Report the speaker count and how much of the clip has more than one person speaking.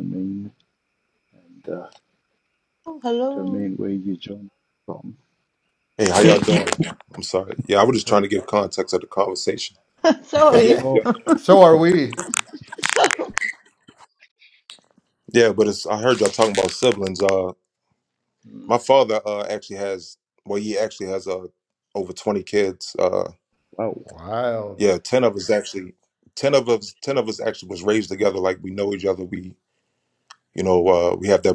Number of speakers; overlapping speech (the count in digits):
4, about 5%